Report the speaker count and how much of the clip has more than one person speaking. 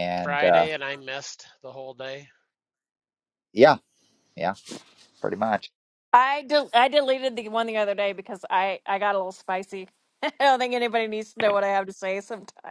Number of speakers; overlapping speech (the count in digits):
3, about 3%